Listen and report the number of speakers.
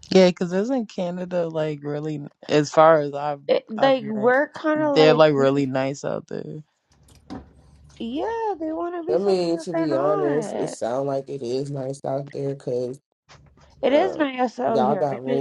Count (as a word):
three